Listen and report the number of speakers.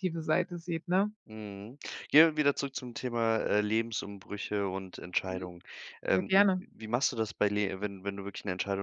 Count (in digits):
2